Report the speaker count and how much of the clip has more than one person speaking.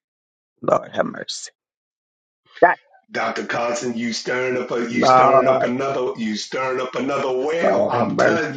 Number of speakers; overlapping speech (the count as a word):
two, about 18%